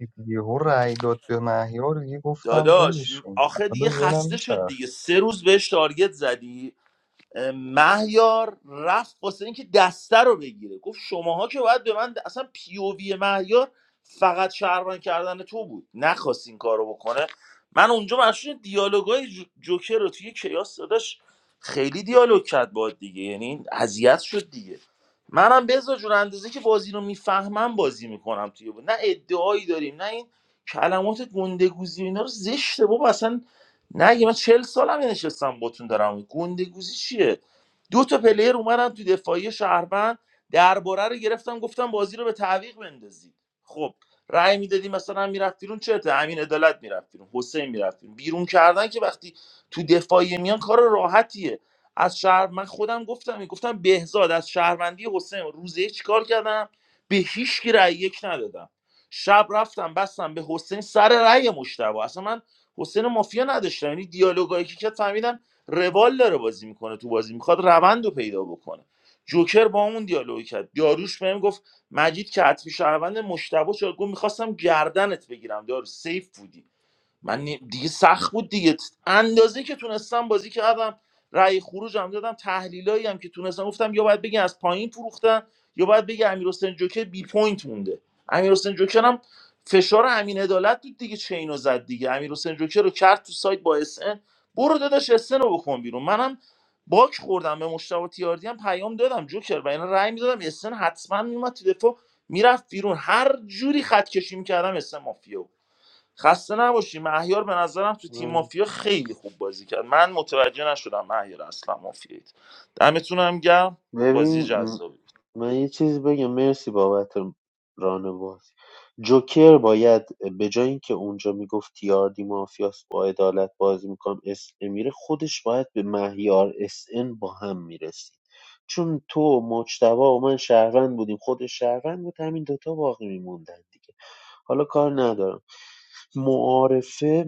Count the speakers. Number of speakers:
3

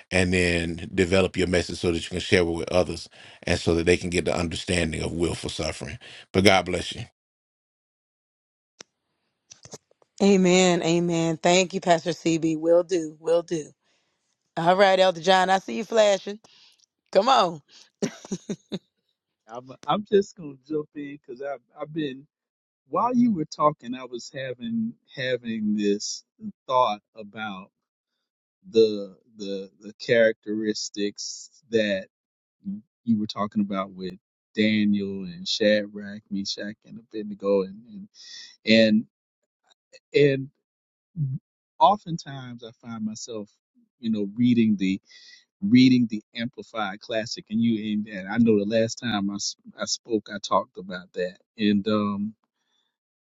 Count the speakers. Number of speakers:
3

